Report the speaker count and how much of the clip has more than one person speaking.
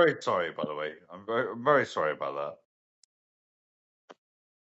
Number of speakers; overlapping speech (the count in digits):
1, no overlap